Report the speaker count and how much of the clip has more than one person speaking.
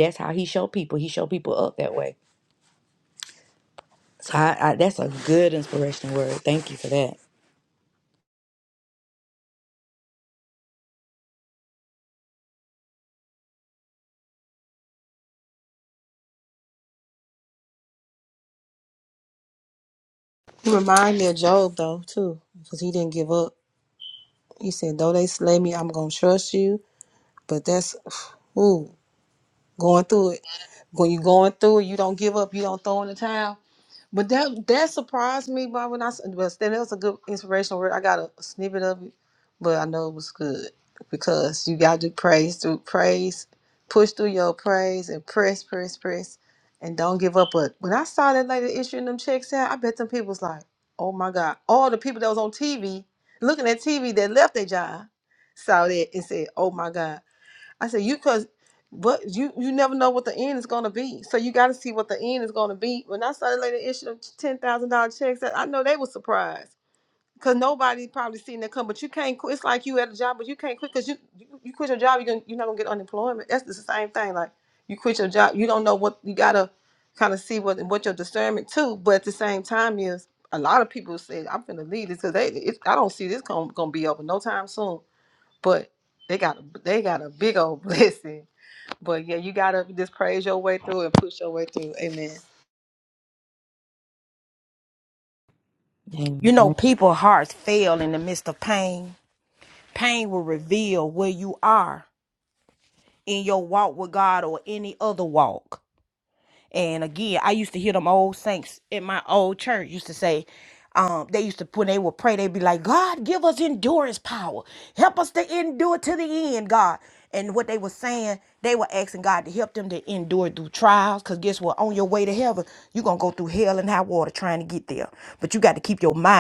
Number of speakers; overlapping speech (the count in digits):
3, under 1%